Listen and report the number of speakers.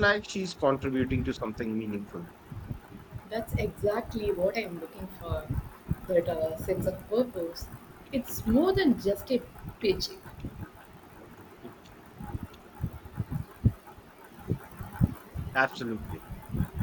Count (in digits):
2